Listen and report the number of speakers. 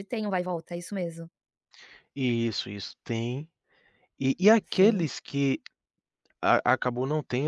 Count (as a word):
two